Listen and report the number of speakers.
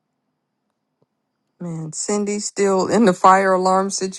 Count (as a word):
one